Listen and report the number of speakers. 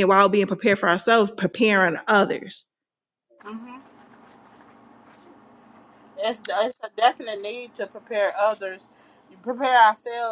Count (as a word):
two